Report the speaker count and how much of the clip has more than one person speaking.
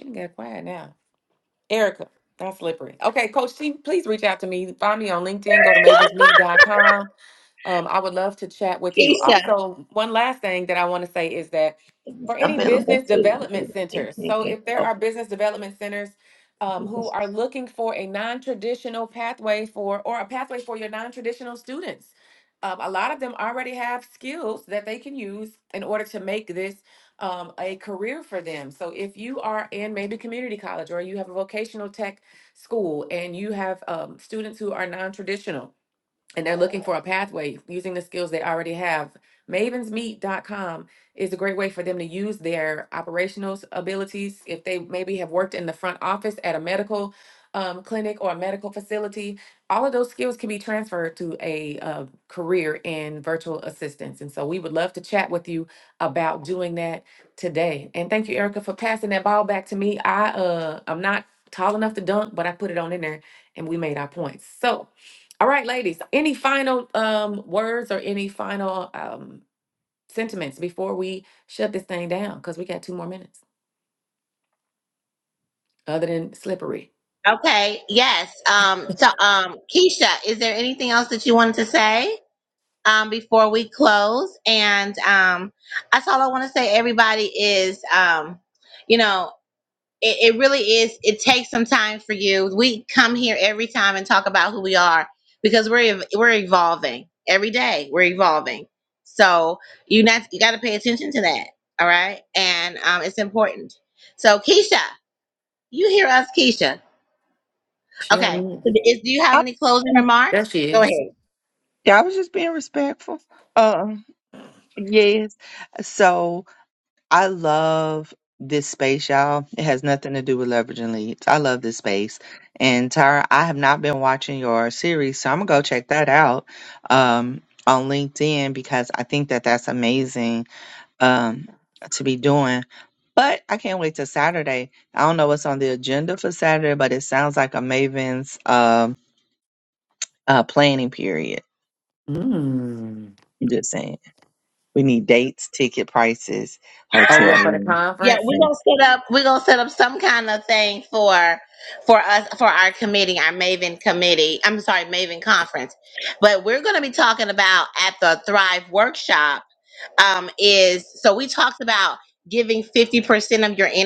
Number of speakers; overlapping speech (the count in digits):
3, about 2%